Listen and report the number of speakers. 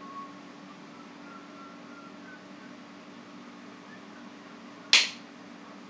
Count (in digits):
0